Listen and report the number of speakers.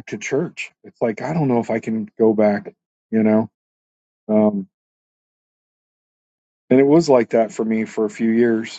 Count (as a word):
one